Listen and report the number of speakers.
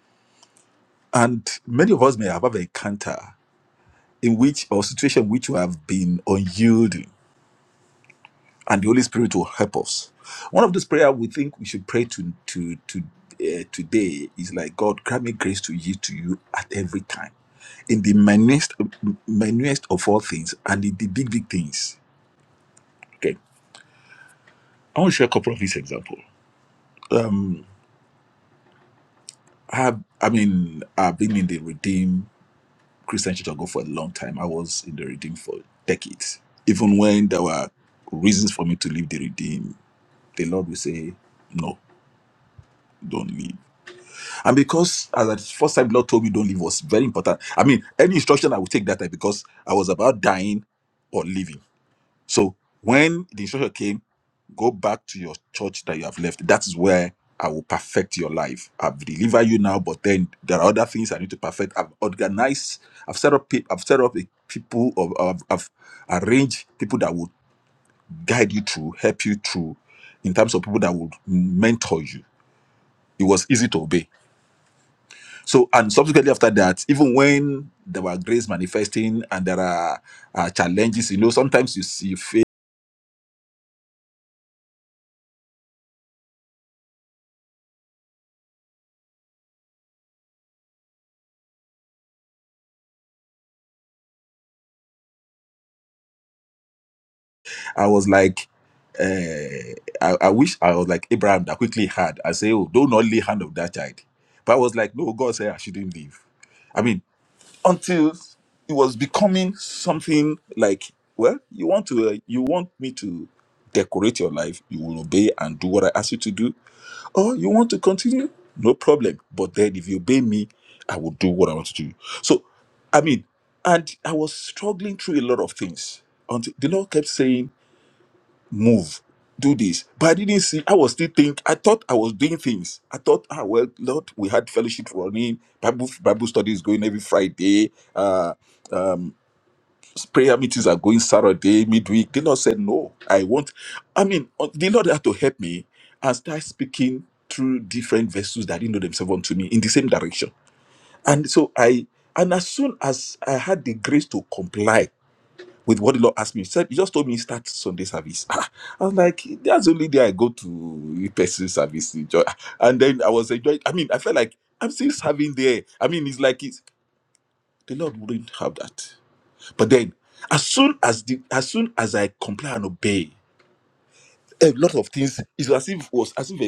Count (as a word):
one